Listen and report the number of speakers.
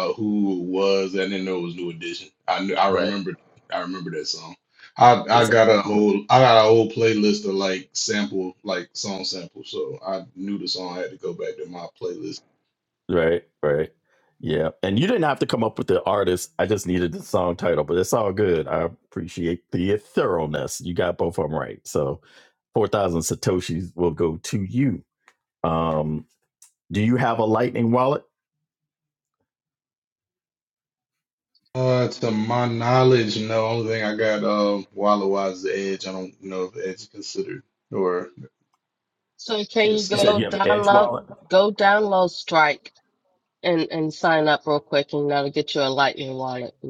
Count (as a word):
three